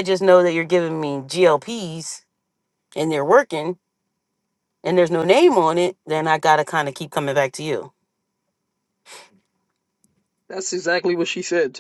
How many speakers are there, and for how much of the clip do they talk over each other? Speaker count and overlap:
two, no overlap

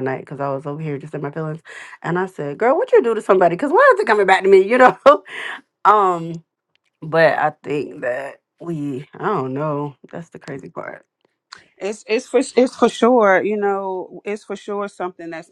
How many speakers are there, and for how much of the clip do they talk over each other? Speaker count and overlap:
two, no overlap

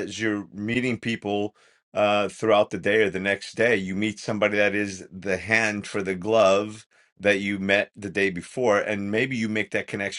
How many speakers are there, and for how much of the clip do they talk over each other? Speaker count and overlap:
one, no overlap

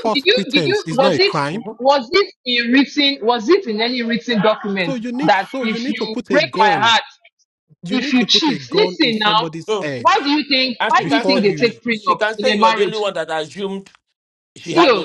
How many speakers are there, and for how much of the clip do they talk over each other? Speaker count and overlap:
three, about 51%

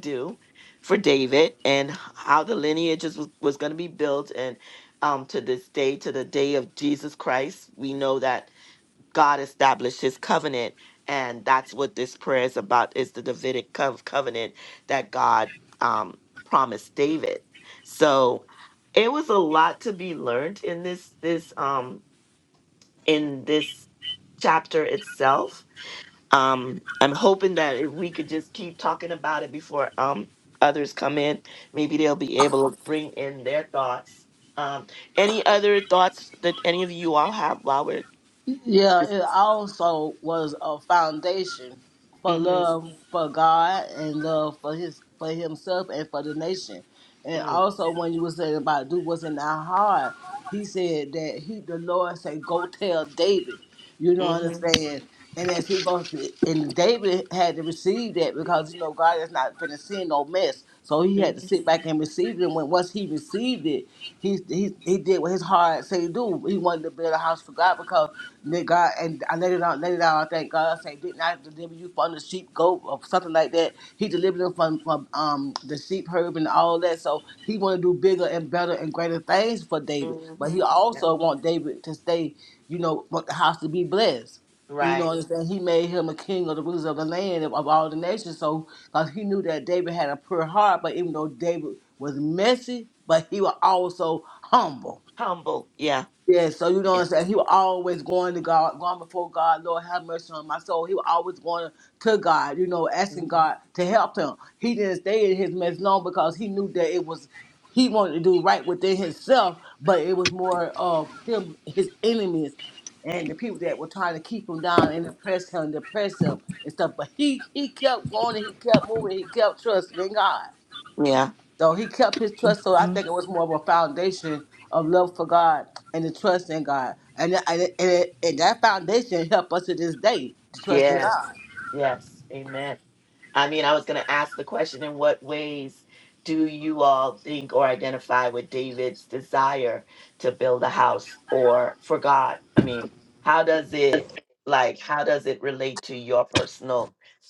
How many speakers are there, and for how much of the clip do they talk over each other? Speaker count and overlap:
two, about 2%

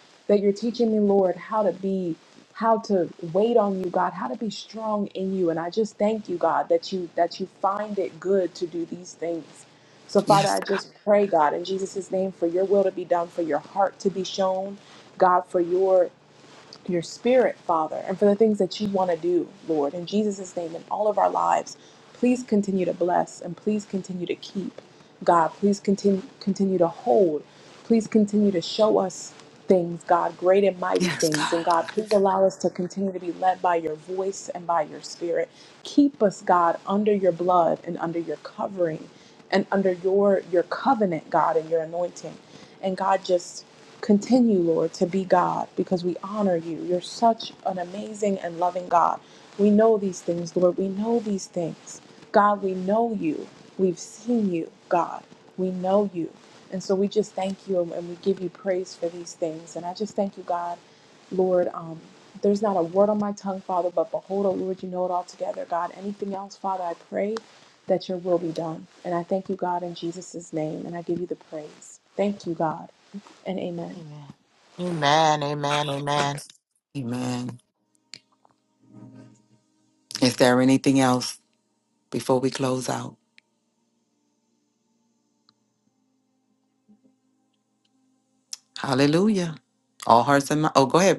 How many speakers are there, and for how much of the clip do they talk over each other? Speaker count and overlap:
three, about 1%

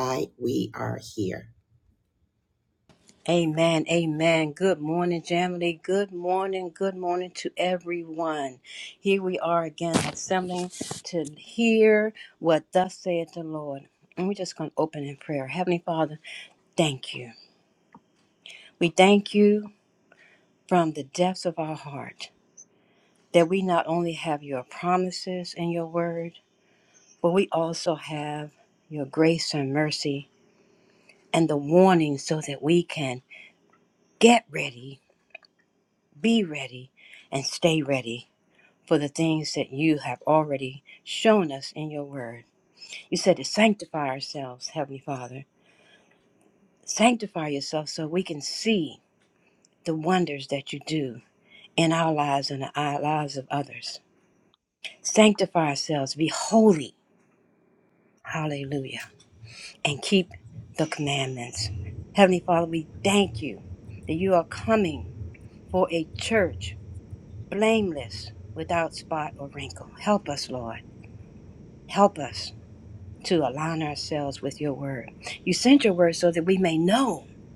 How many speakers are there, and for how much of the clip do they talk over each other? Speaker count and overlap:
two, no overlap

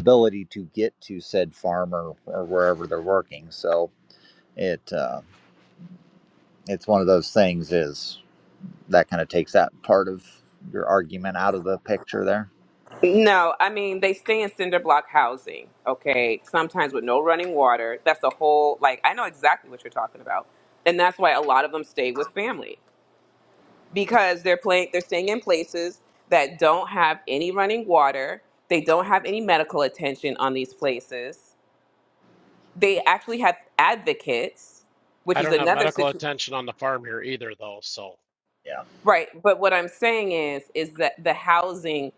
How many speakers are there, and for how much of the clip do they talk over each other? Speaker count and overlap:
three, about 2%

